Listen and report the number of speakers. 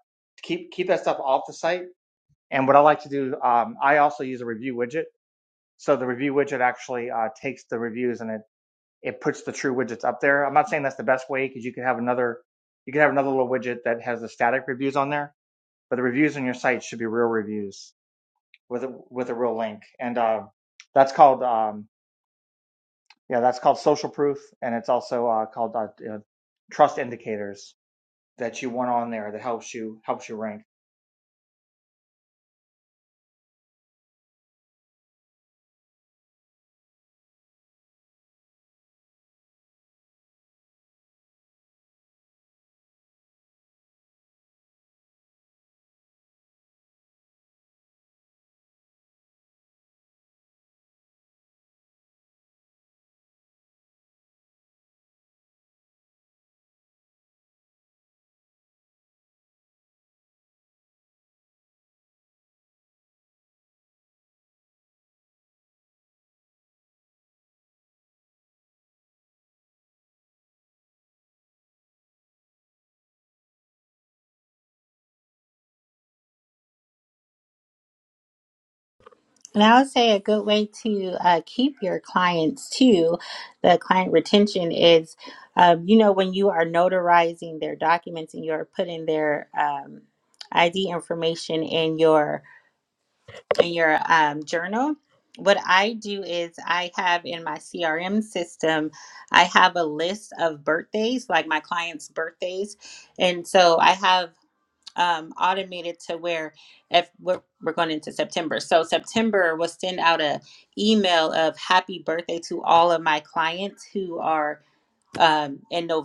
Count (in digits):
2